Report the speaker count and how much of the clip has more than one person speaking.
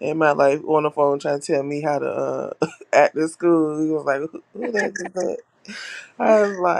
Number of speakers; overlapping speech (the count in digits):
1, no overlap